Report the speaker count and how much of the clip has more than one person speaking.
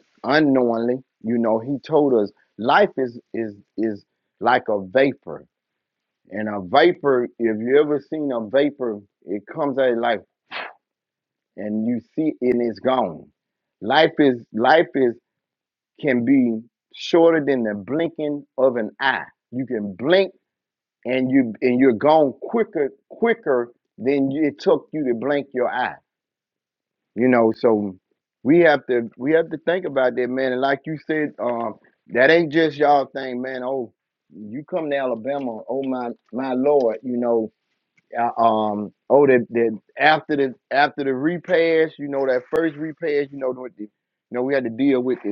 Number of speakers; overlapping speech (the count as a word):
one, no overlap